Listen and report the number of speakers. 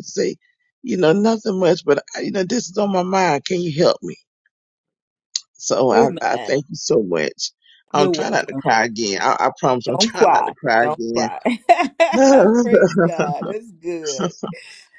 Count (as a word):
two